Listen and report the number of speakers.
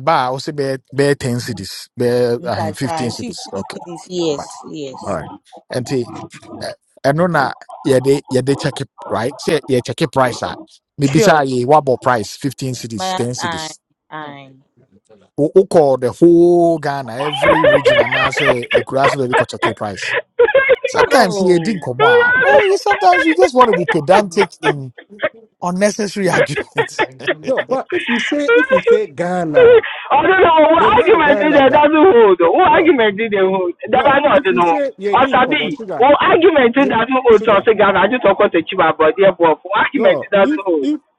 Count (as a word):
four